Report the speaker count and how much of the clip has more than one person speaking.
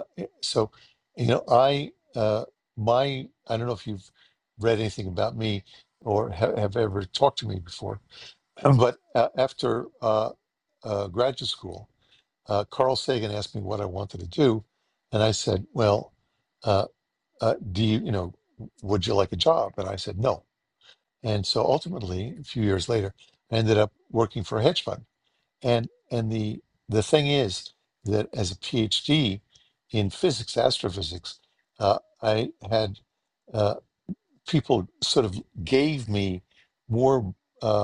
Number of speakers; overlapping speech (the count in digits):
1, no overlap